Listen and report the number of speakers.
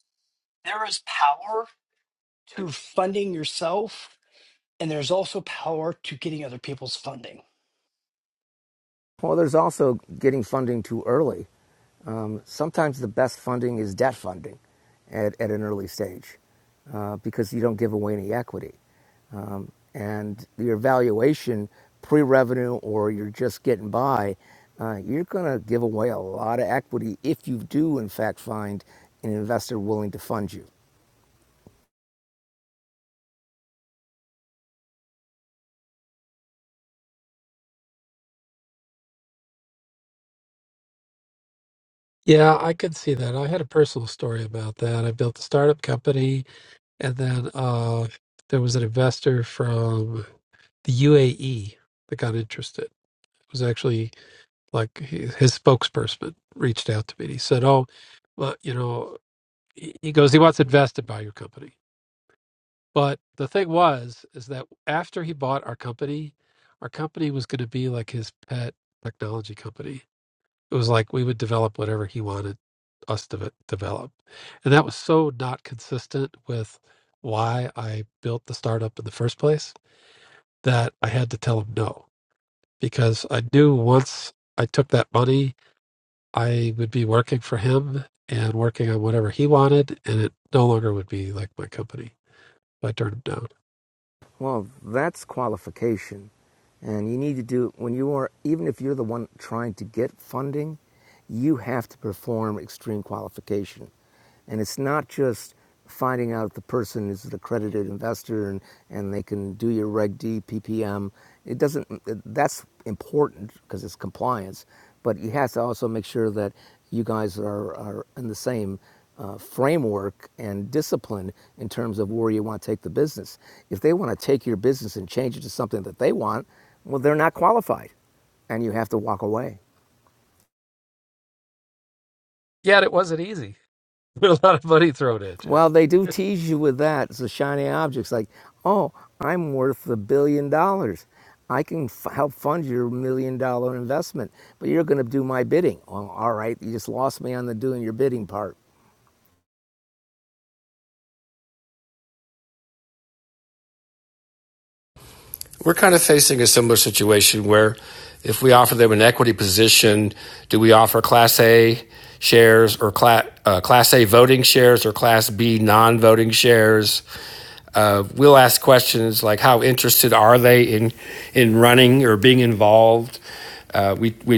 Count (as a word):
four